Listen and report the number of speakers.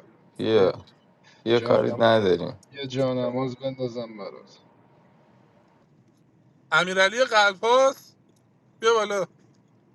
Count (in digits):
3